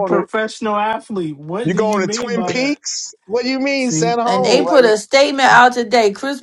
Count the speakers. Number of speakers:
three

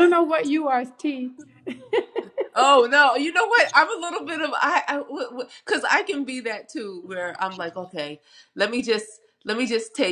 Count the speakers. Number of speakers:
two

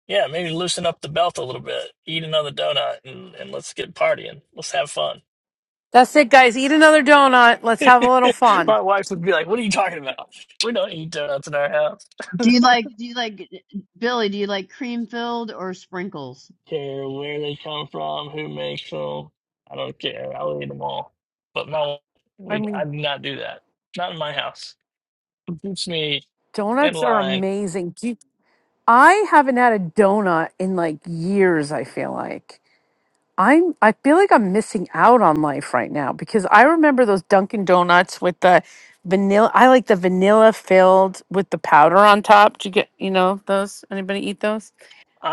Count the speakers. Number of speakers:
three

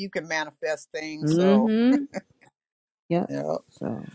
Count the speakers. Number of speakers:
two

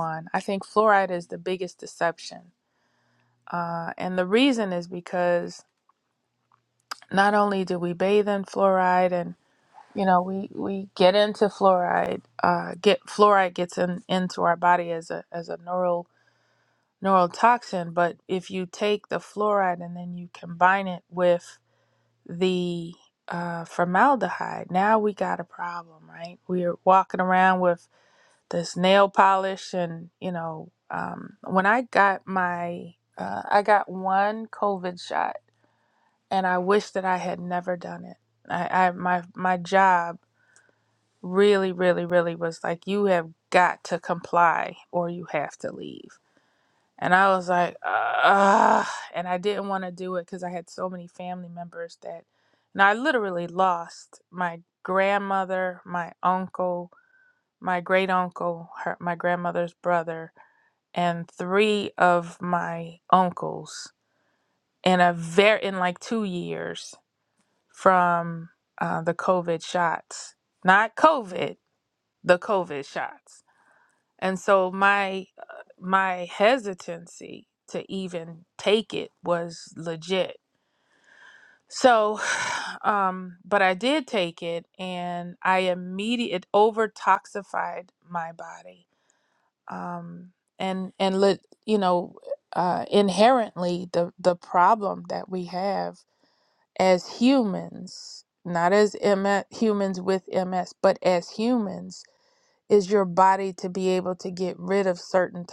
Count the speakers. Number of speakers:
one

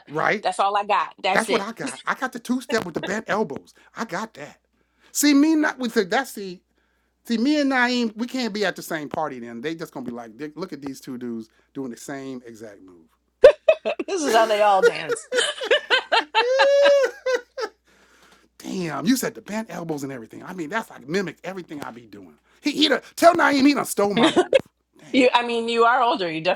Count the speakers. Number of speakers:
three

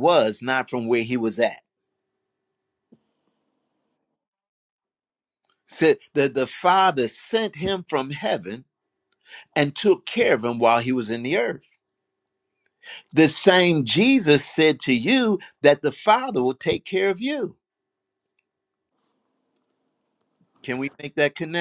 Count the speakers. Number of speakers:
one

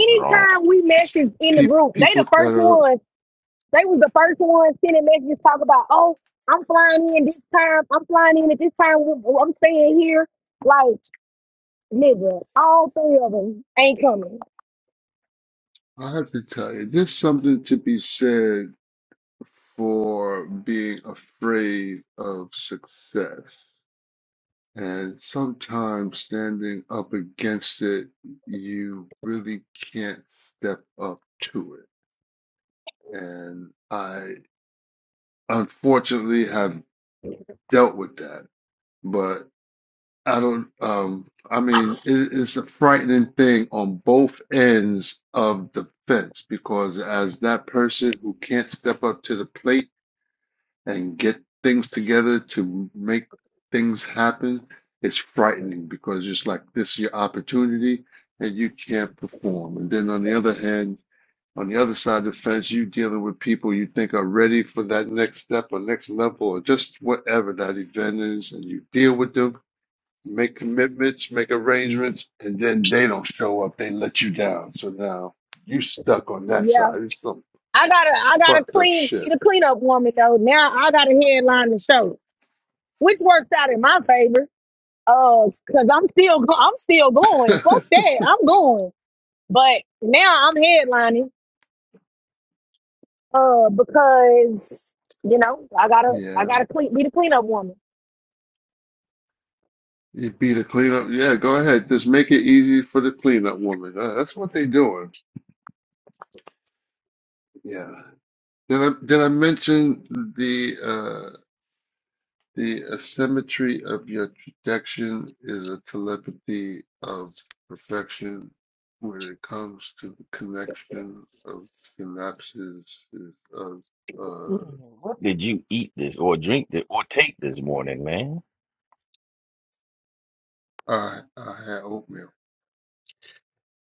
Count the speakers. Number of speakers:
three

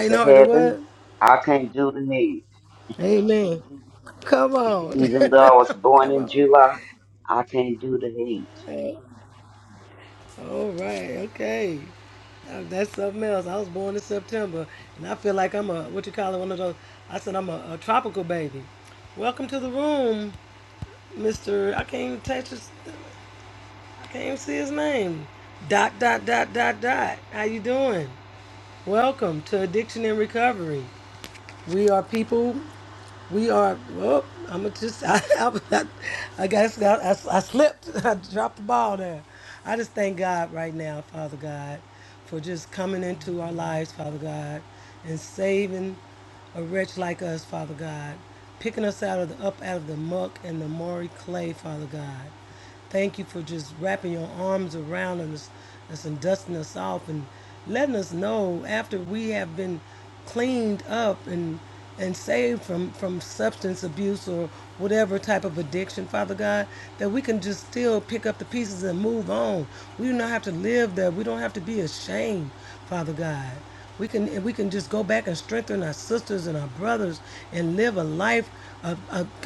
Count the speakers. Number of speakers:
two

